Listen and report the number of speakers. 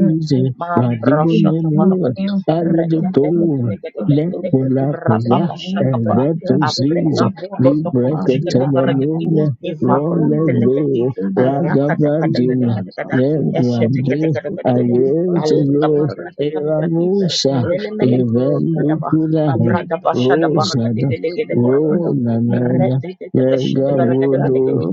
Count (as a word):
three